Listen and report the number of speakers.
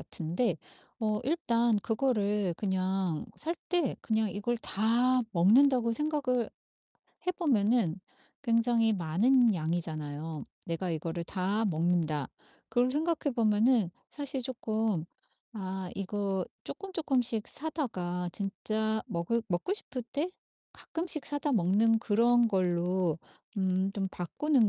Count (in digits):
1